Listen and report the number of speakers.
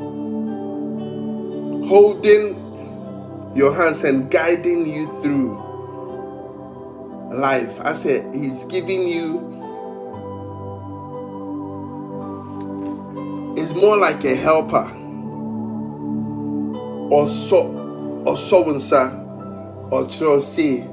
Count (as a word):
one